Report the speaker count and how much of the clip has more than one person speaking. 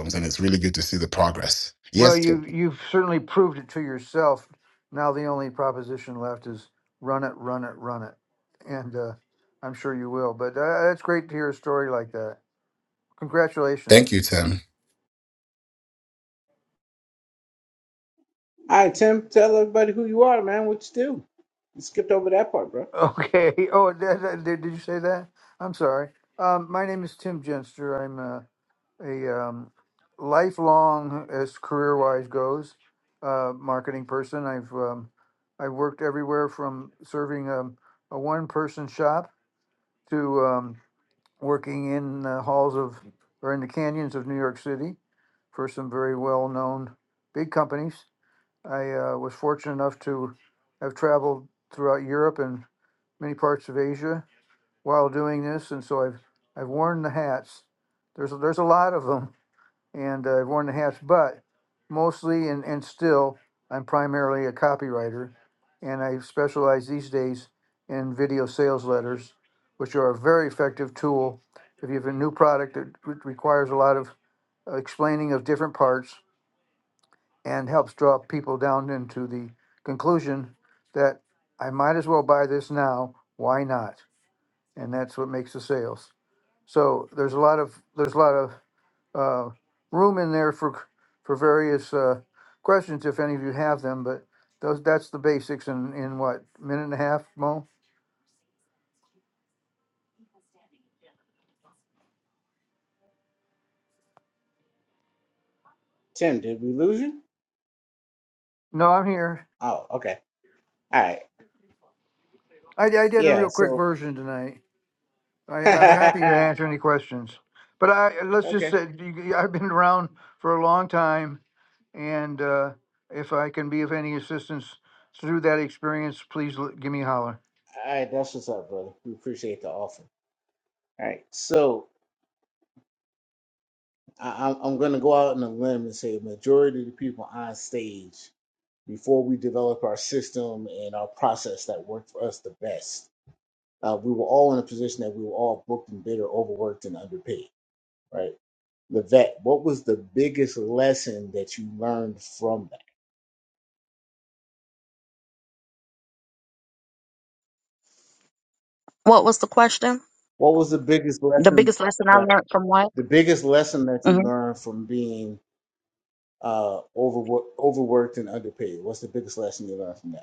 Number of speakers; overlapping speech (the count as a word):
four, about 1%